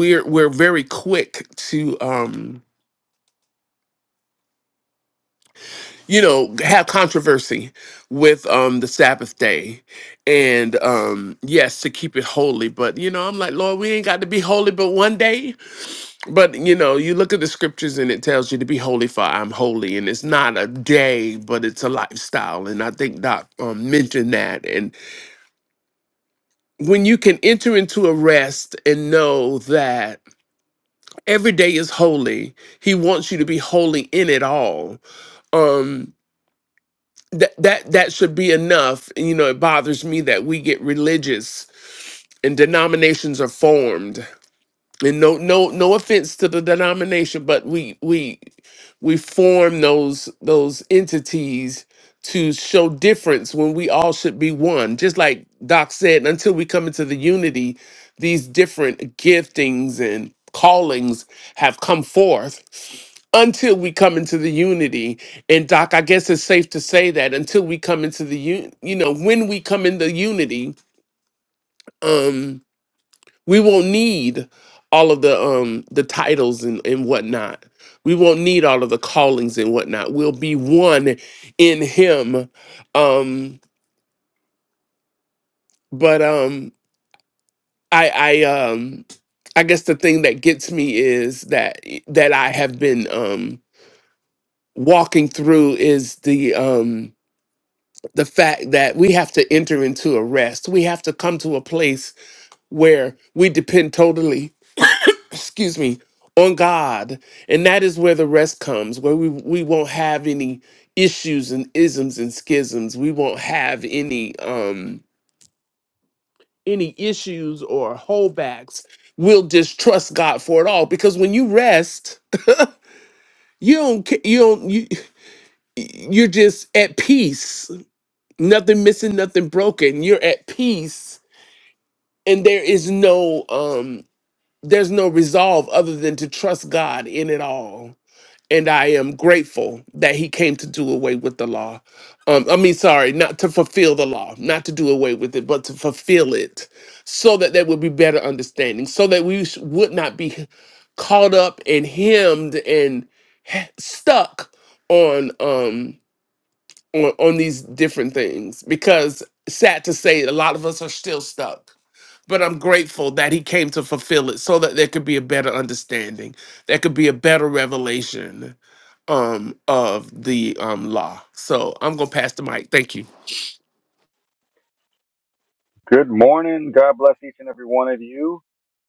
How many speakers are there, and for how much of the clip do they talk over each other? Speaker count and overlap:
two, no overlap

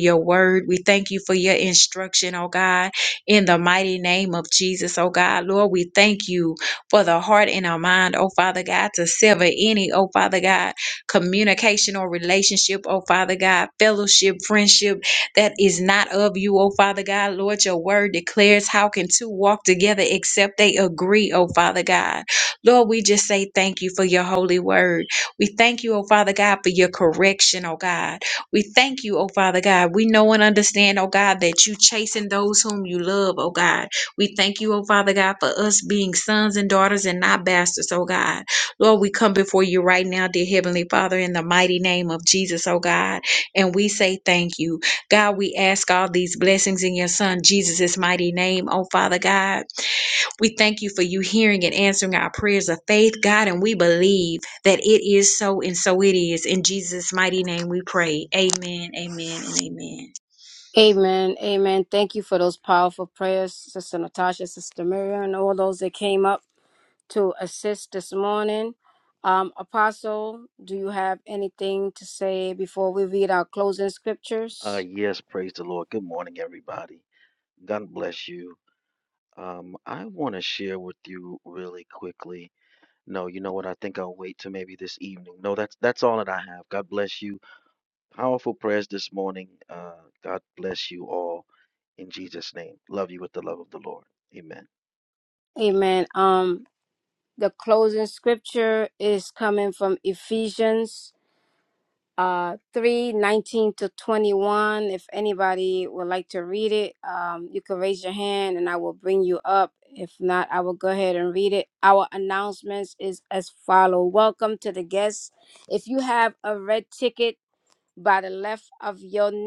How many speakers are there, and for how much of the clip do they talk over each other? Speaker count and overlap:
three, under 1%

